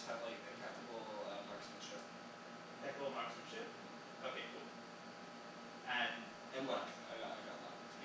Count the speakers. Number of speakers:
two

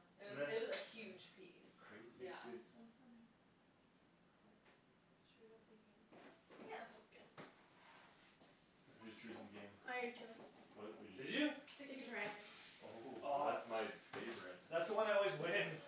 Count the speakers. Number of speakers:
four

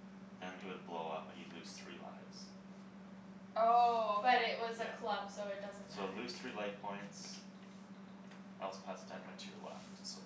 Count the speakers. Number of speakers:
three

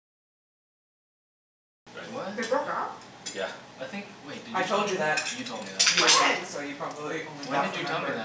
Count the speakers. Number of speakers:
three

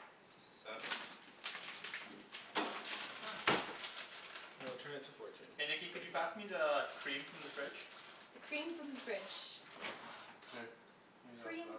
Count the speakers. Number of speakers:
three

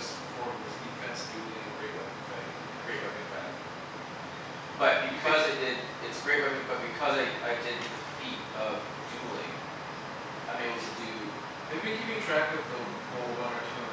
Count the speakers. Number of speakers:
two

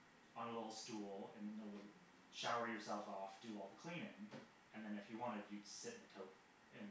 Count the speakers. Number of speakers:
one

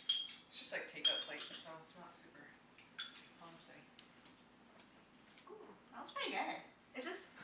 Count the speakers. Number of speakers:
two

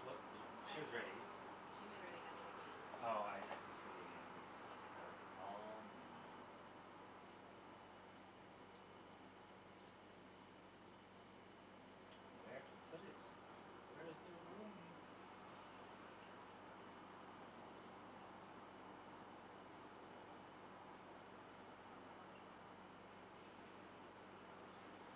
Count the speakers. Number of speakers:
two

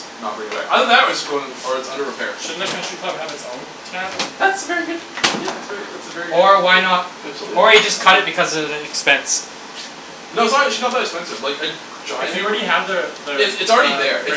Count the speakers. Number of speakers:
three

